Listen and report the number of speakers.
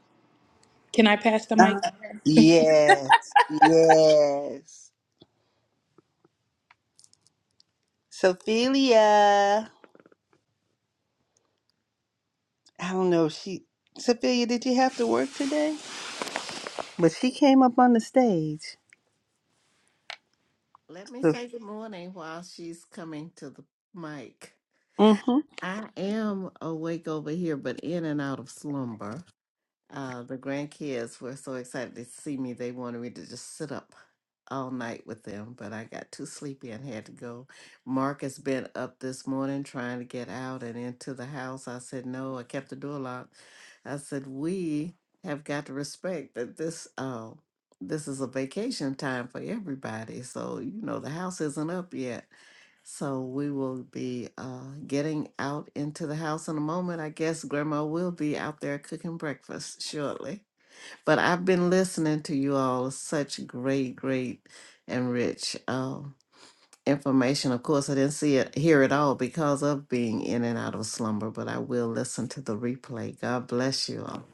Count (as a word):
three